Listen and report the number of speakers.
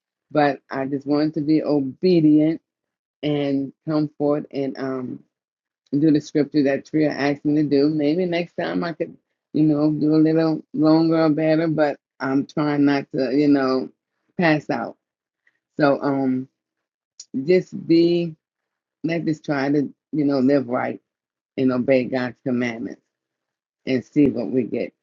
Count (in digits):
1